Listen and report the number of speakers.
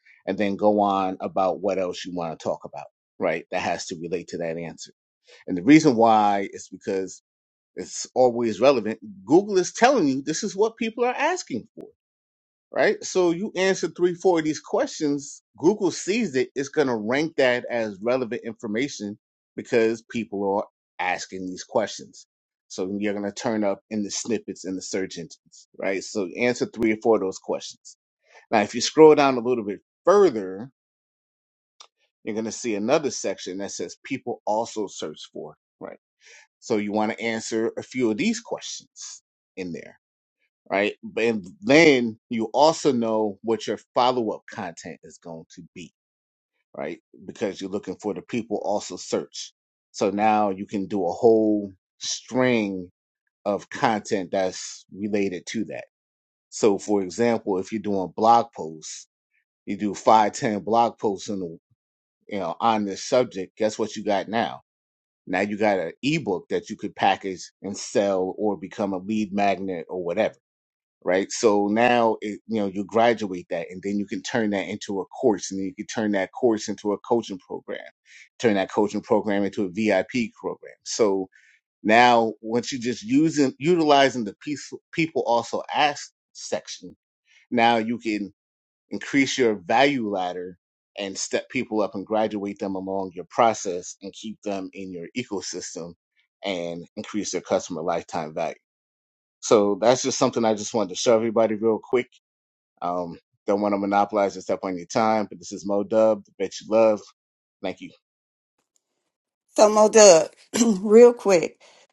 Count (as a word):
two